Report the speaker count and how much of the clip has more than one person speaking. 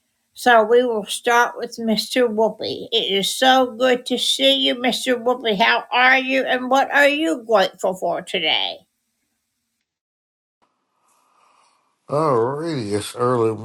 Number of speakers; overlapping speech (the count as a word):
two, no overlap